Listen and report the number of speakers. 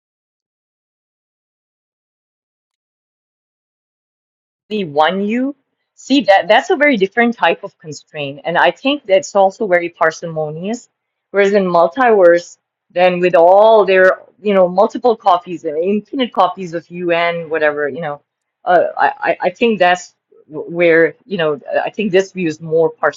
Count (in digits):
1